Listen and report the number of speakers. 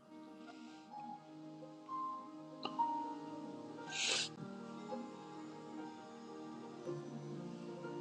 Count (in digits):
0